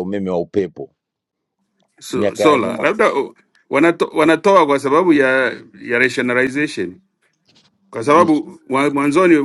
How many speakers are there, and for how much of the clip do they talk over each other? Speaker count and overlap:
2, about 11%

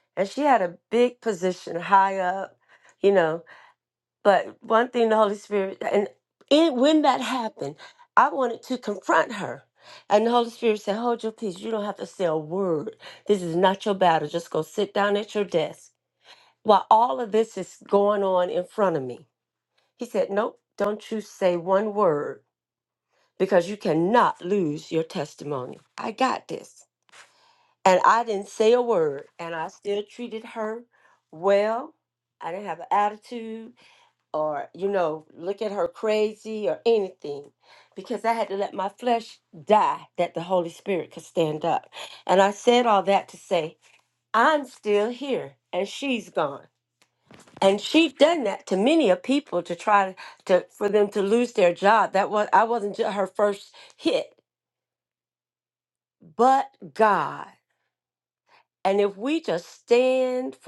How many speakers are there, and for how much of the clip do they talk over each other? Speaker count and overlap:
1, no overlap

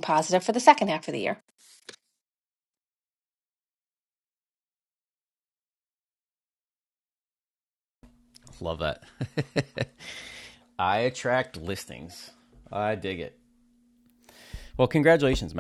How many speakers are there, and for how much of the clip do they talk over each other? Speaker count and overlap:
2, no overlap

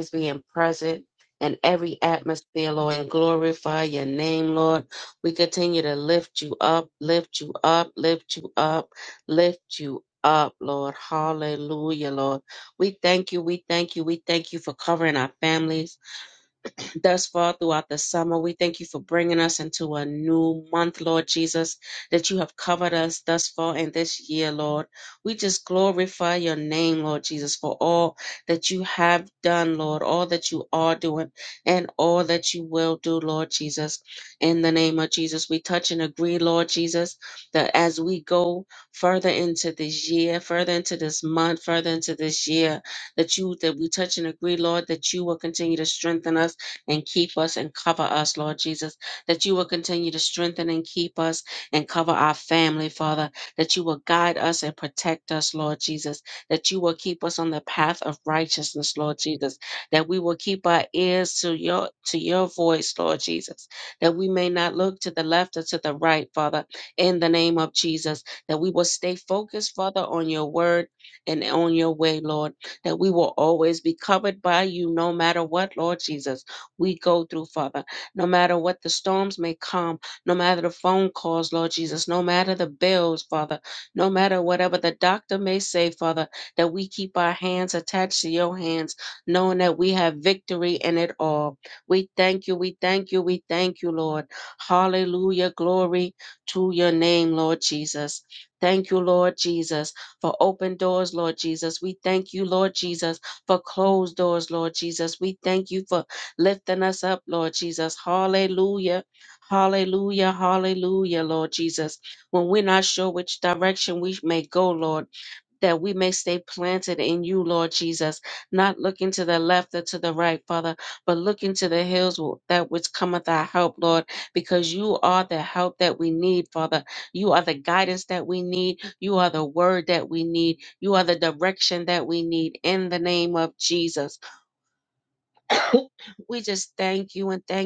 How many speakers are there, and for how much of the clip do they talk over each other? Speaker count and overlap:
1, no overlap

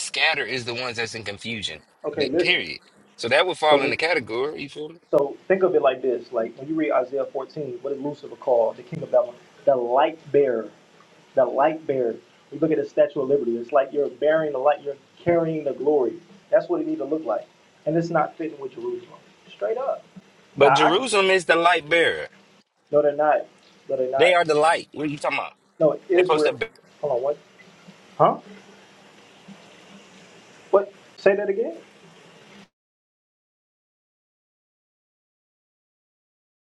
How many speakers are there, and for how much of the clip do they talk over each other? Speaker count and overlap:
2, about 5%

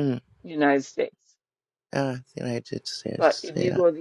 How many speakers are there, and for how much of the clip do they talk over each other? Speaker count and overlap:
2, about 6%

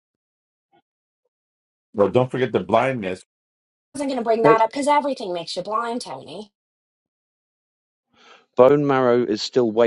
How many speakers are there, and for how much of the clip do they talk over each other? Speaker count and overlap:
3, about 1%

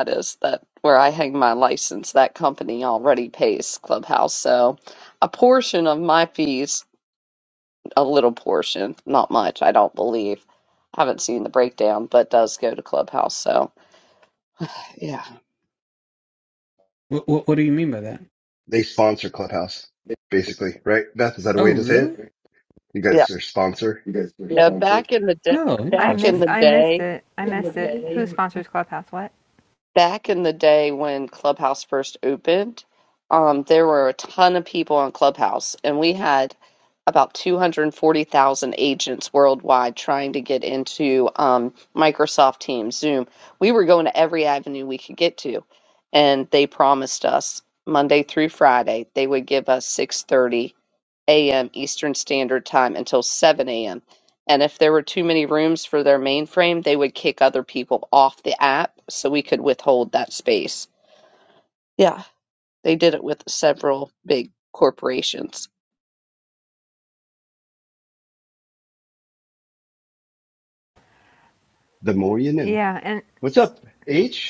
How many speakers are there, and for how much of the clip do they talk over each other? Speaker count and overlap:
4, about 3%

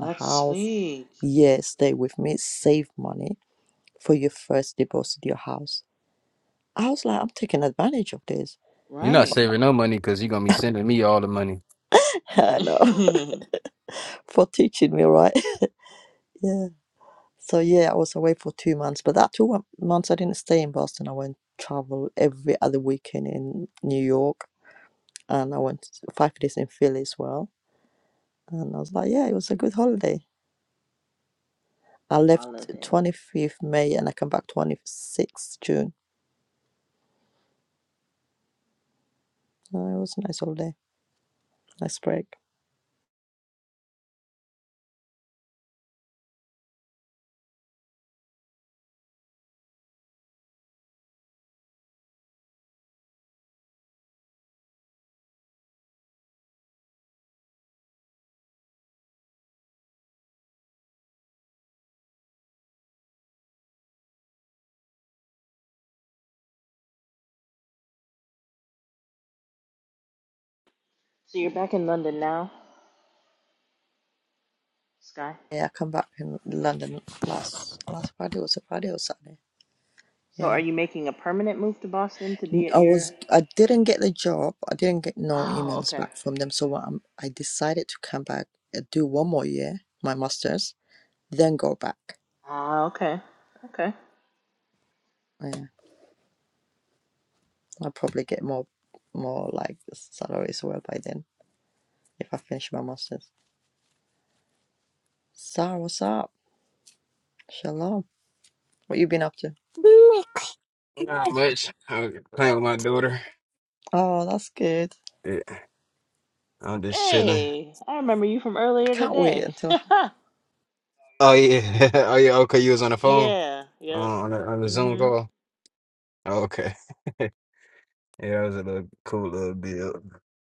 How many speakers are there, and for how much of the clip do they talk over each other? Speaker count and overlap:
3, about 4%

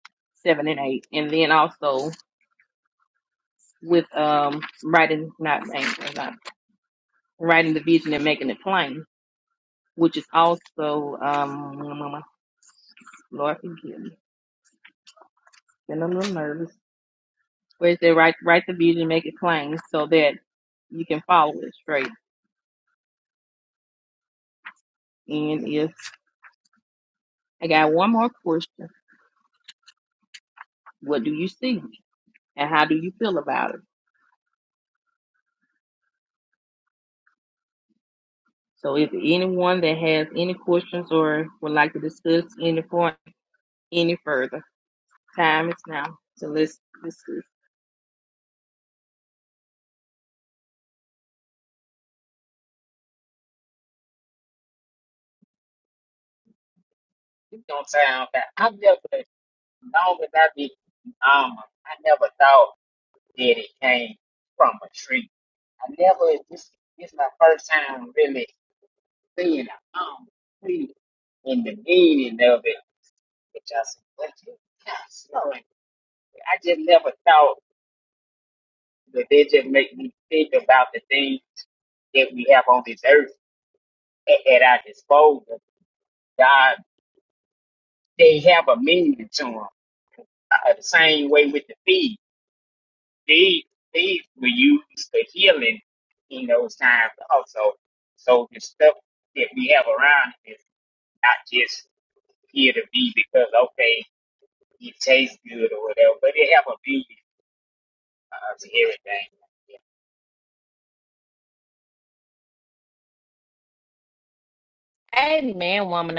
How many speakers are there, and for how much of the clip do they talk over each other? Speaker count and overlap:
3, no overlap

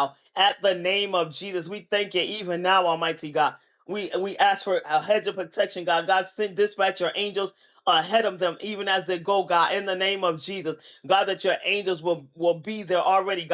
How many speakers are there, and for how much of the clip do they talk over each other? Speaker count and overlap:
1, no overlap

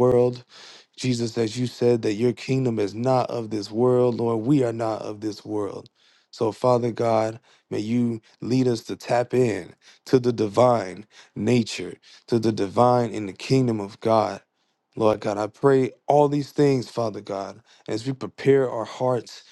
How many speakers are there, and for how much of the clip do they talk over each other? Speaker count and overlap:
1, no overlap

